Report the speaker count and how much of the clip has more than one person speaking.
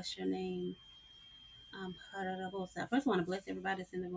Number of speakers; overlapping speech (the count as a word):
one, no overlap